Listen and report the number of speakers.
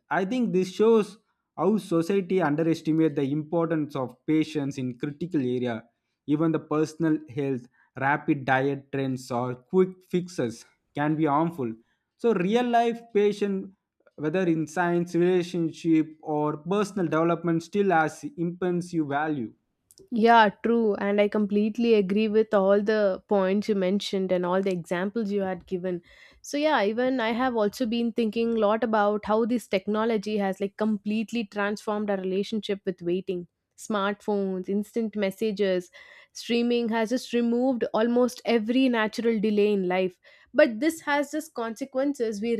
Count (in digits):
2